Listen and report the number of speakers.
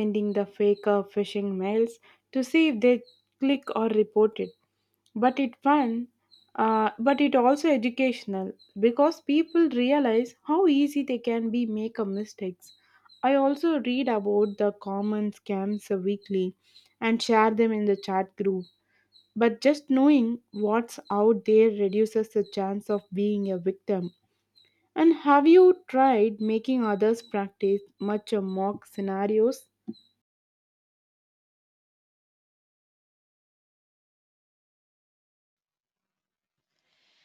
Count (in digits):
1